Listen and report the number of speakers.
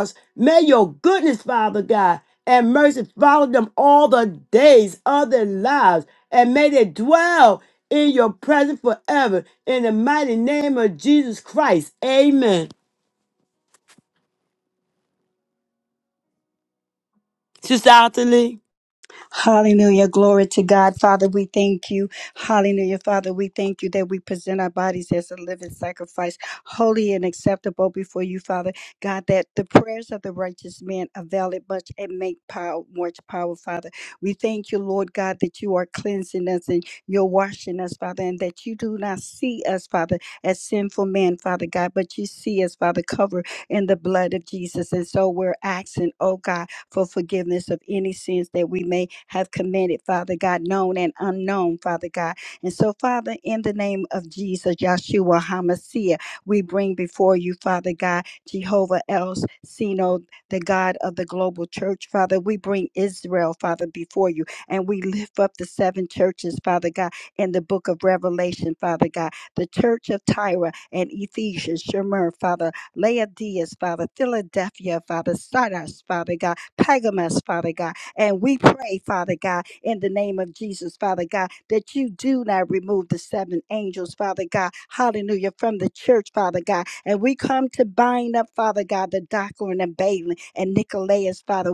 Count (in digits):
2